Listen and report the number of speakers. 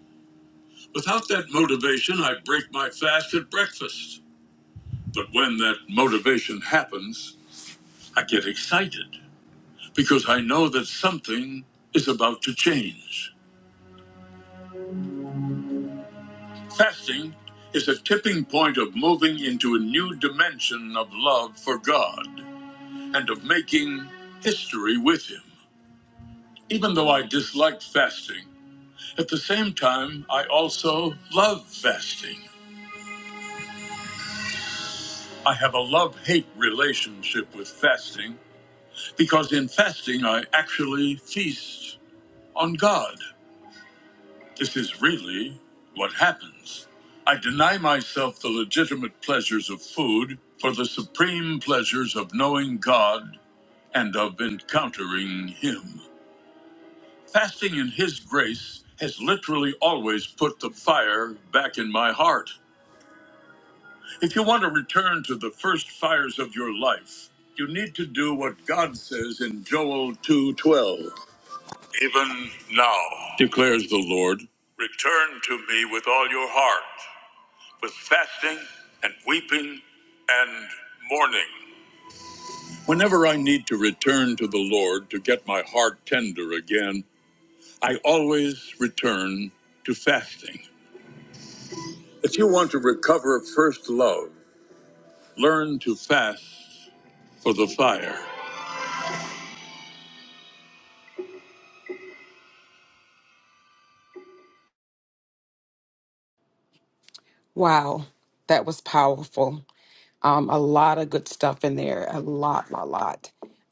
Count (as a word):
two